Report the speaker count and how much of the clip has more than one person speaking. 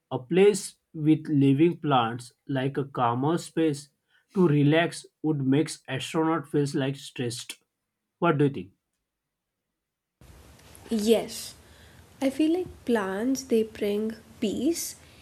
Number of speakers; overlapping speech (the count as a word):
two, no overlap